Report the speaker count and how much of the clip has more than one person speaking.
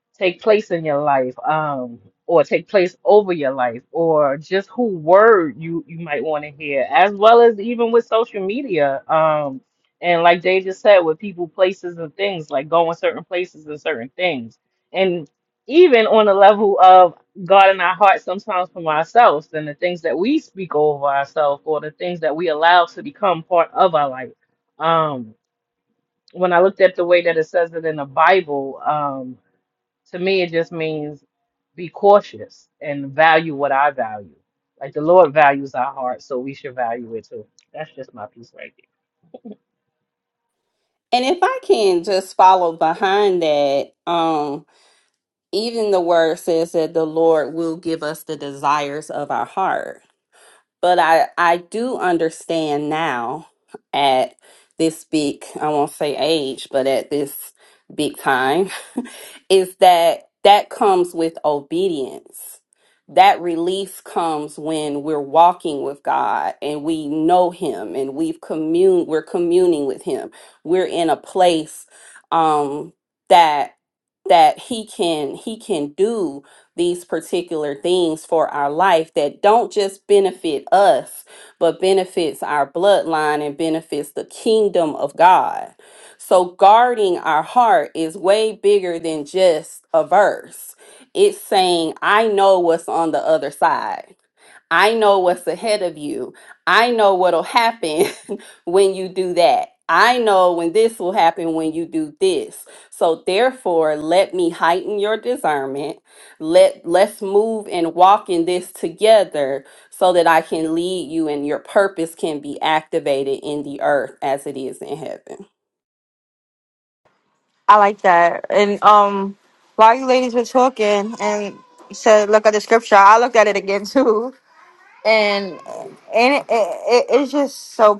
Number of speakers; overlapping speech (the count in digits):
3, no overlap